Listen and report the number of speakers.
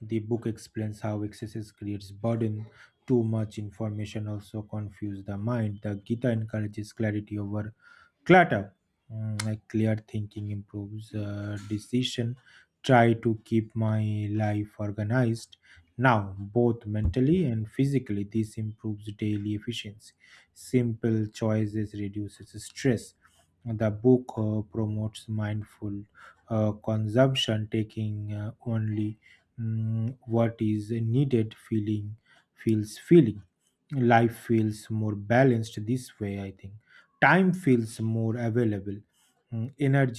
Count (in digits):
1